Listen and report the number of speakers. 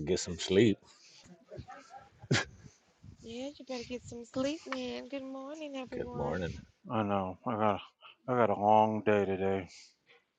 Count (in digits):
3